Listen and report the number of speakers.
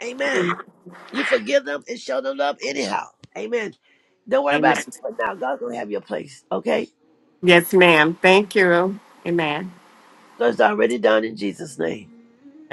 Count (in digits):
2